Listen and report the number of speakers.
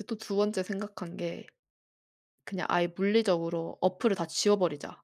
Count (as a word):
one